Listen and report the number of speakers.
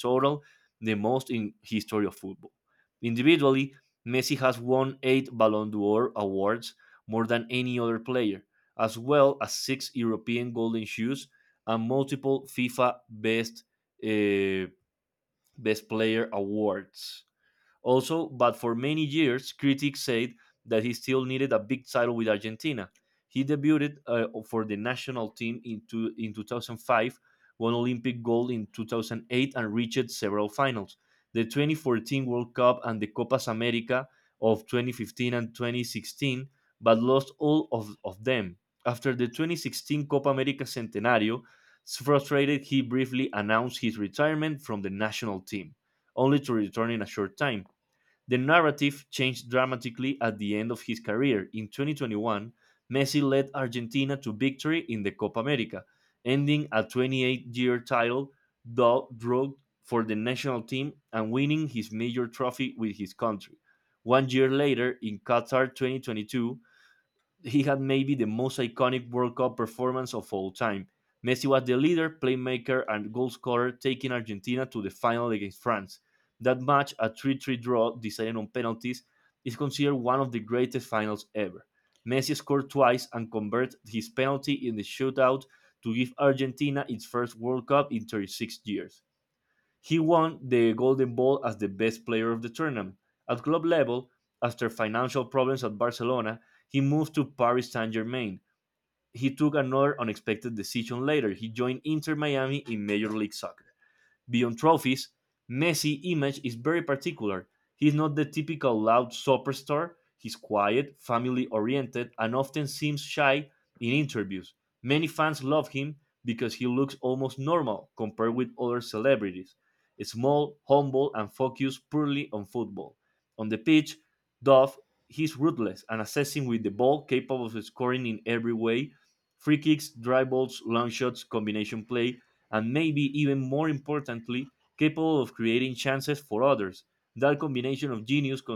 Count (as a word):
one